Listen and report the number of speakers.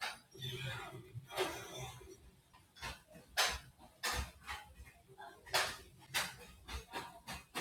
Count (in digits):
0